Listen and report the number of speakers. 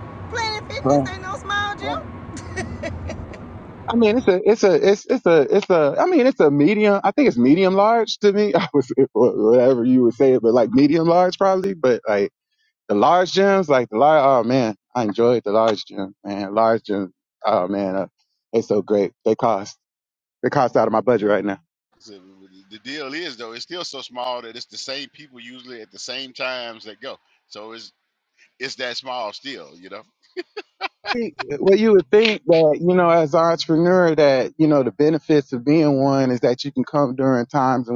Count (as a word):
three